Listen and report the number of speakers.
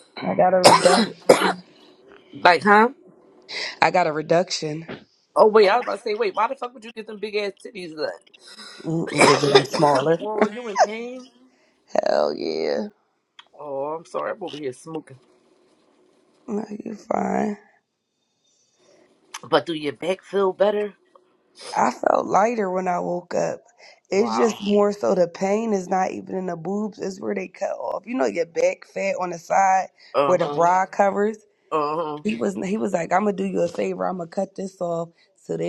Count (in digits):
2